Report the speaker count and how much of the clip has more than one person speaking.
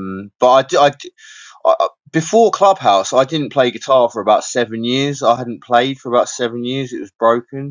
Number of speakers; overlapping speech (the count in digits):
1, no overlap